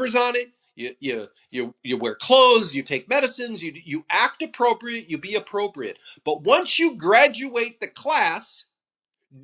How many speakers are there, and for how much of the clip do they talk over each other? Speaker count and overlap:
one, no overlap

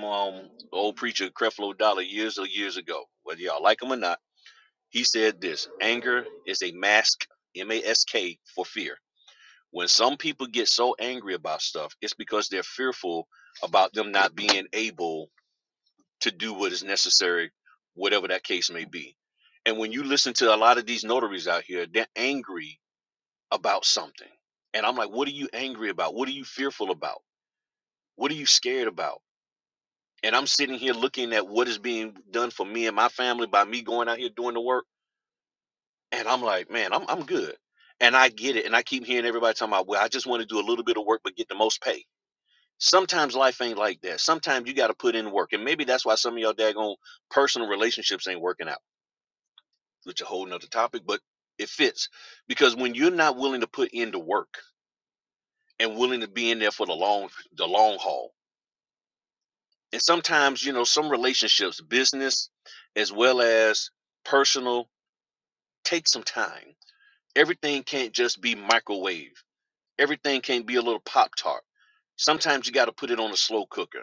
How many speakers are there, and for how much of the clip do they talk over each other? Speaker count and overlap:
one, no overlap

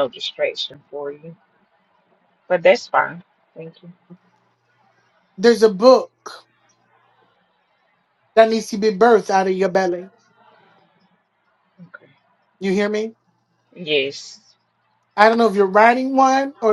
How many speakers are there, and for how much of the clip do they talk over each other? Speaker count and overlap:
two, no overlap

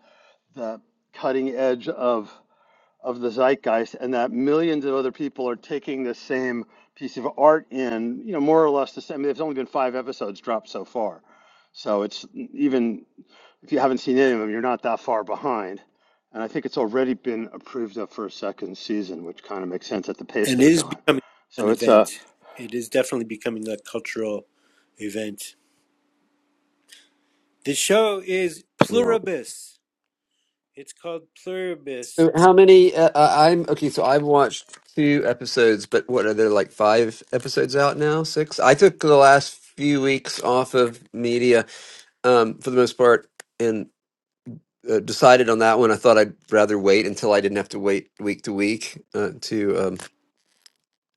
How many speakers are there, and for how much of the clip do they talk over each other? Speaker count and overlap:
three, about 3%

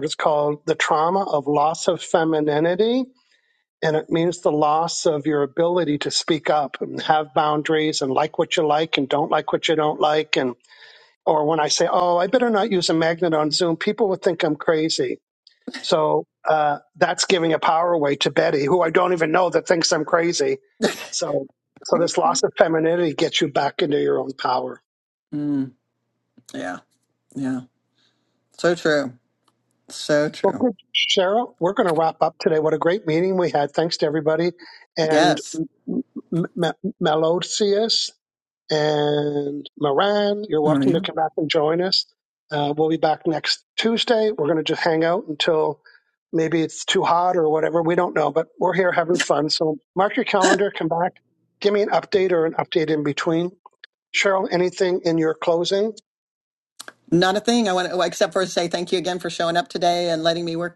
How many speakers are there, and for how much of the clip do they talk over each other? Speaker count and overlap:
two, about 2%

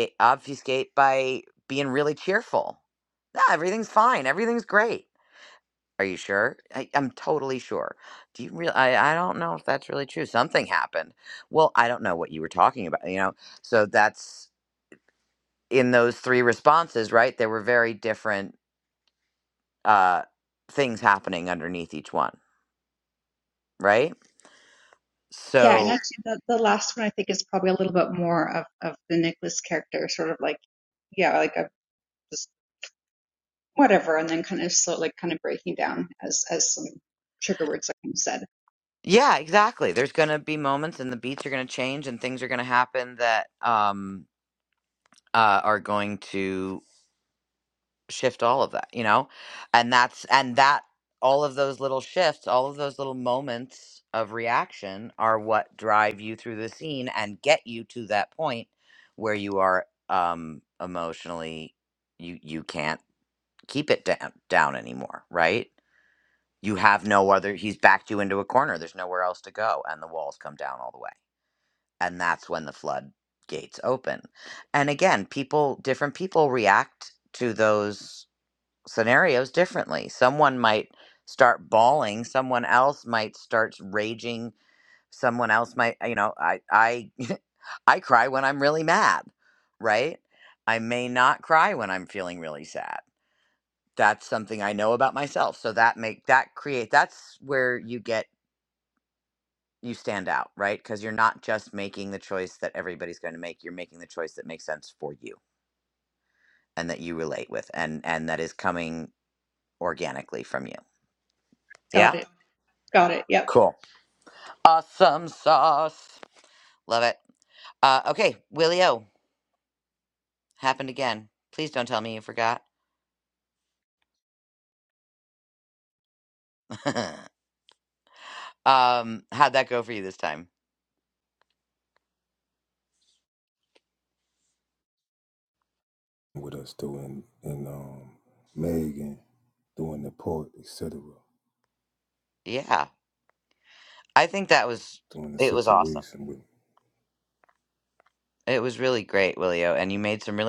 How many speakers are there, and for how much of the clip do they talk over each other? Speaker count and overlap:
three, about 1%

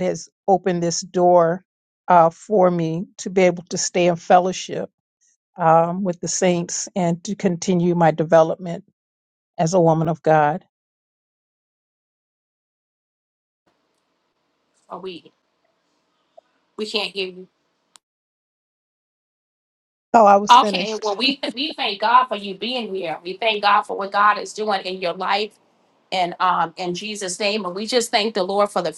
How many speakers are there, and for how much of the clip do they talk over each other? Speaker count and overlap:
two, about 1%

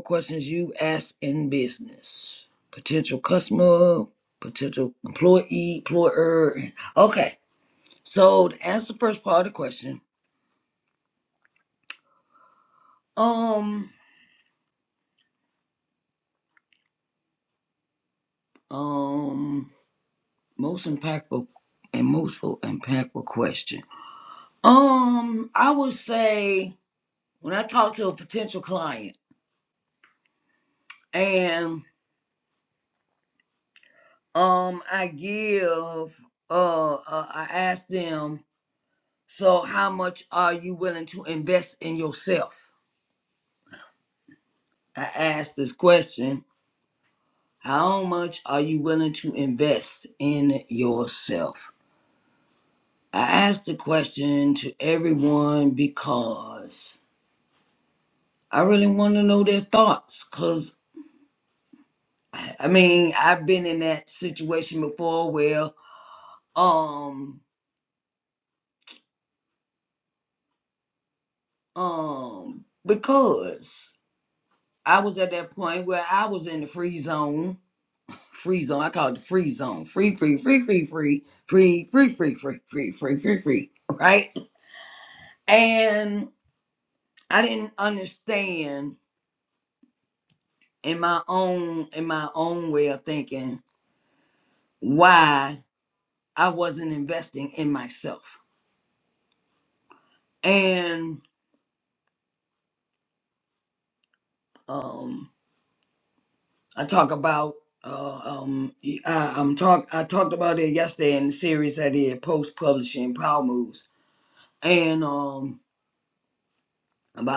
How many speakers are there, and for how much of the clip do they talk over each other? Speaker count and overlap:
one, no overlap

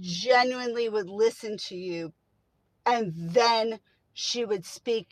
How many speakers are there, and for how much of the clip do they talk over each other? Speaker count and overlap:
one, no overlap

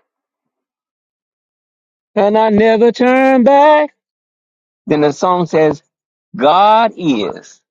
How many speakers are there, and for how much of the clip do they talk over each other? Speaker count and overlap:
one, no overlap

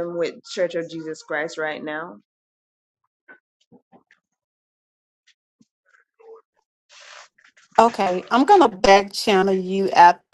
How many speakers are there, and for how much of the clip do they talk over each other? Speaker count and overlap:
two, no overlap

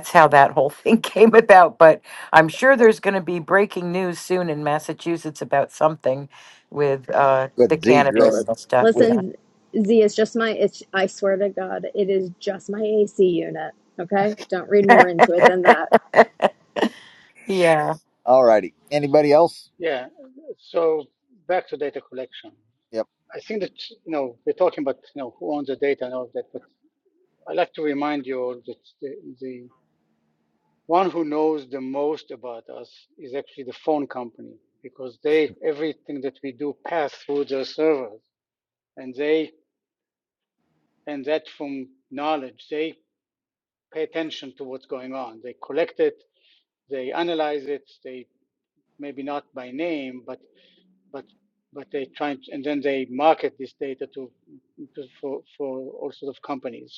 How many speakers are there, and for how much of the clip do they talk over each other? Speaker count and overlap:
four, about 2%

